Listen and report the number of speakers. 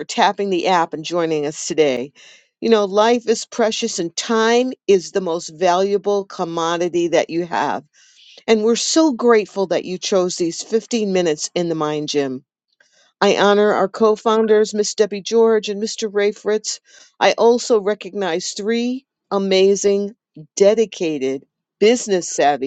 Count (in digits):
1